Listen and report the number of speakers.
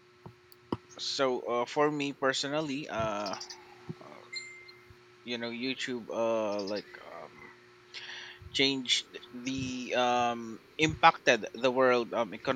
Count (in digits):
1